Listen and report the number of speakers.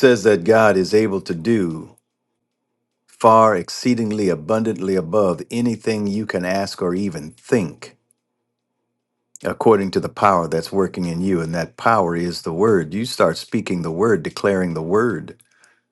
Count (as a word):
one